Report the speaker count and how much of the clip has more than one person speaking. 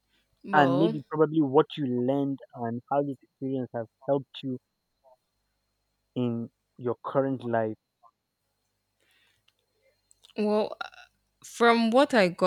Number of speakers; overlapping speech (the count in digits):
2, about 4%